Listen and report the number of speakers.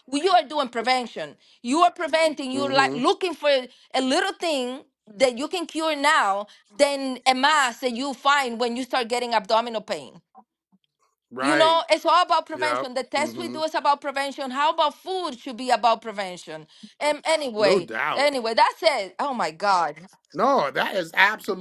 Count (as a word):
two